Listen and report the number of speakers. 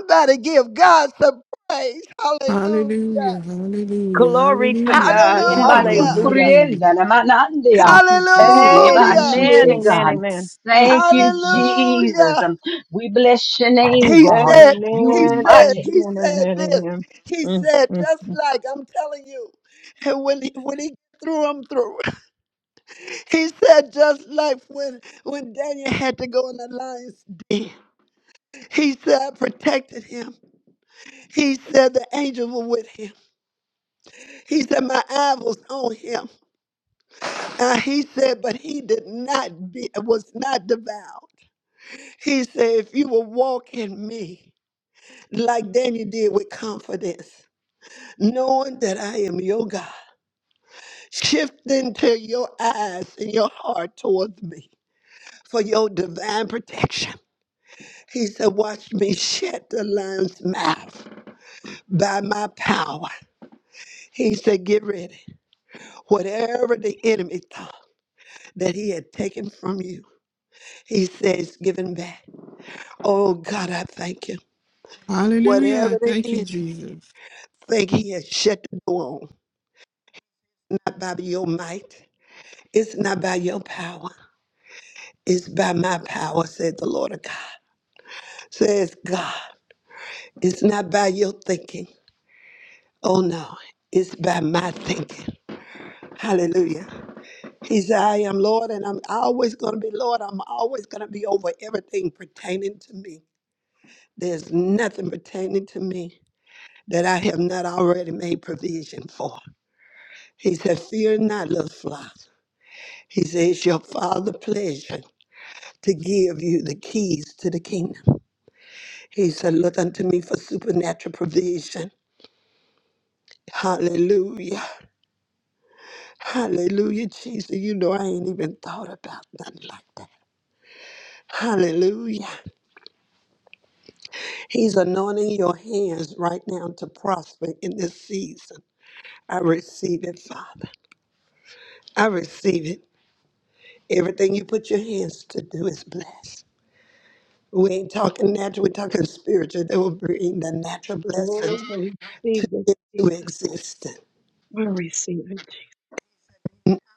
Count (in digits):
4